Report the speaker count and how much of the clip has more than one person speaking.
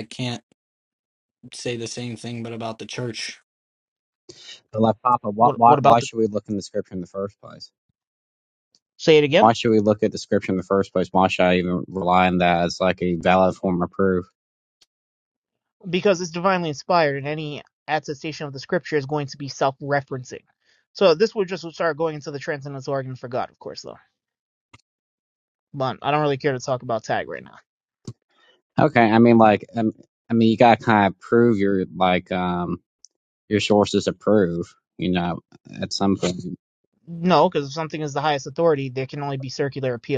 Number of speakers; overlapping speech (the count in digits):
3, about 2%